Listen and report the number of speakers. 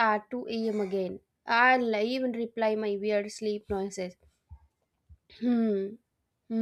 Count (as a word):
one